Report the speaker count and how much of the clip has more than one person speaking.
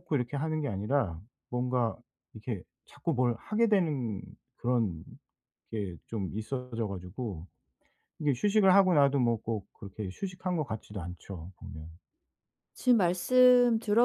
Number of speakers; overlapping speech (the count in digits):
2, no overlap